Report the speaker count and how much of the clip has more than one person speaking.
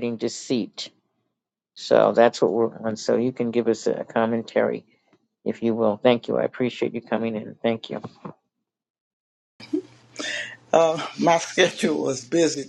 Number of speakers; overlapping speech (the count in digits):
2, no overlap